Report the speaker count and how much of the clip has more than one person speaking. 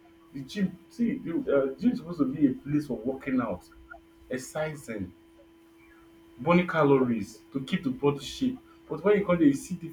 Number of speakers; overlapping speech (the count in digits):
1, no overlap